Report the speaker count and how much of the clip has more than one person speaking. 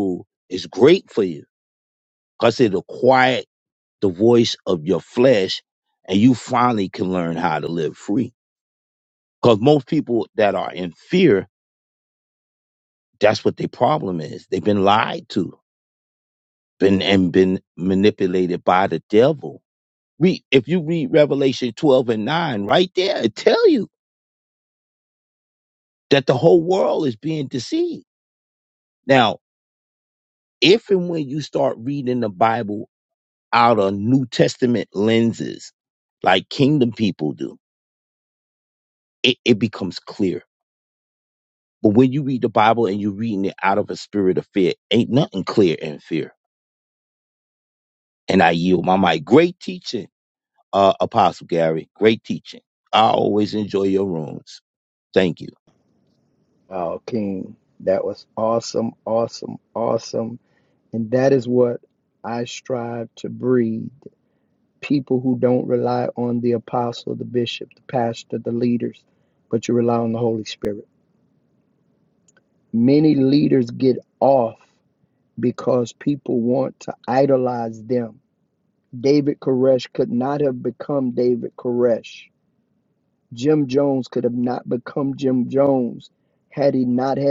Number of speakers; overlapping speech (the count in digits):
2, no overlap